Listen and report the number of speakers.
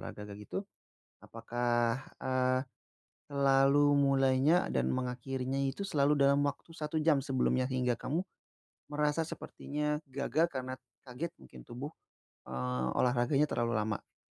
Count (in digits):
1